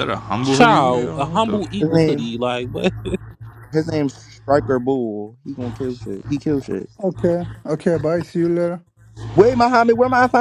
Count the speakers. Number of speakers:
four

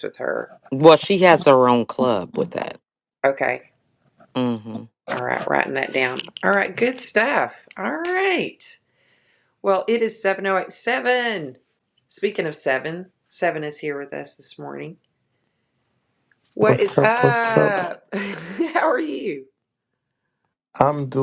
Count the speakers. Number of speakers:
three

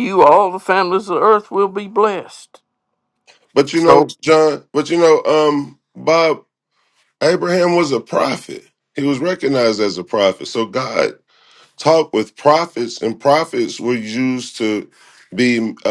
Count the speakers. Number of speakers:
two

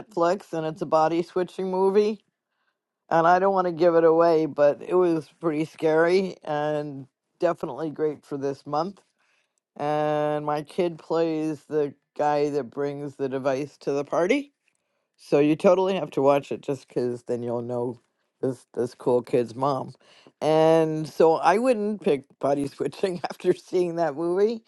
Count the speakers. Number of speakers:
one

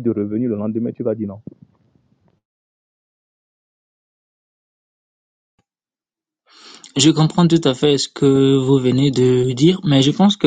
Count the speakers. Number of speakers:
two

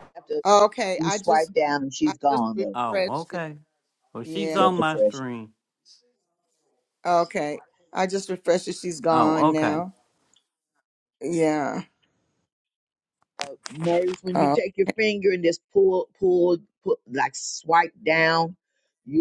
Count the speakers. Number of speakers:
three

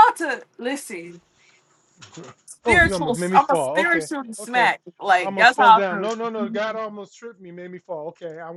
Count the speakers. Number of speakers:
two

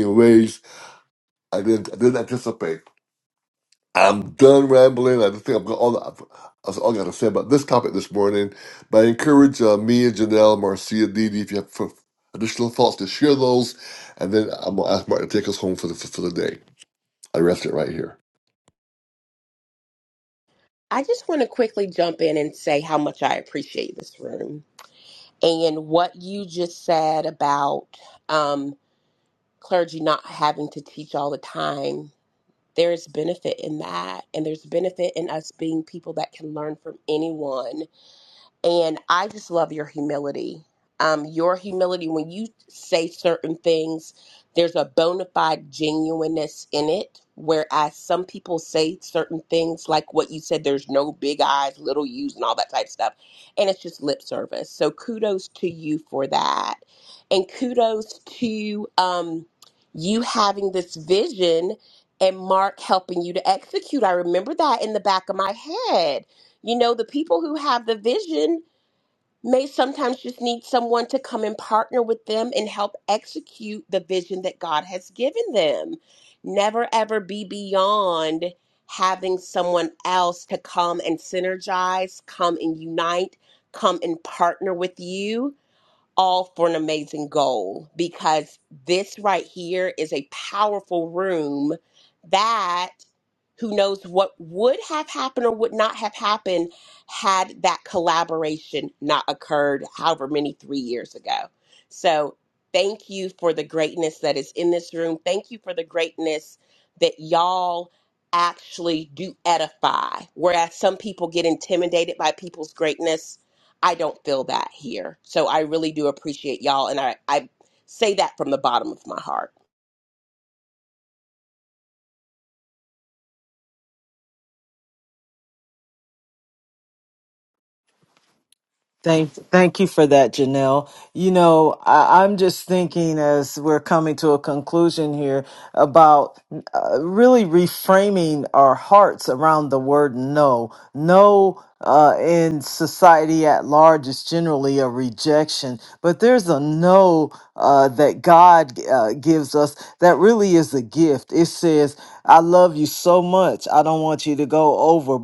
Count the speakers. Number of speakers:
three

